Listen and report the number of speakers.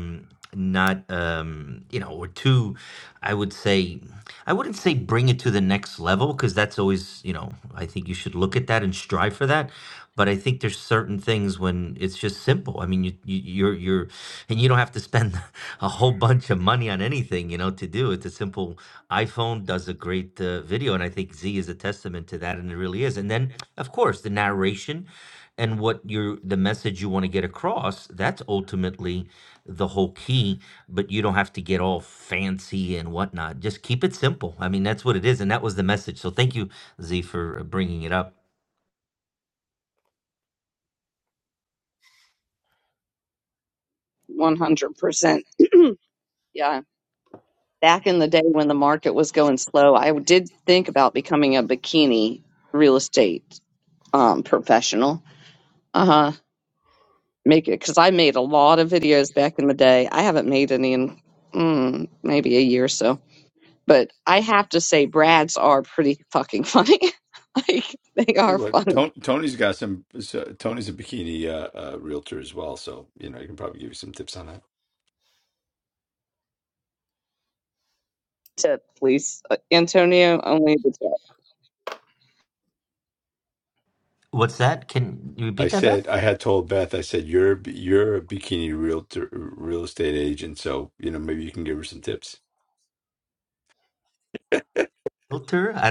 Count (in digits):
3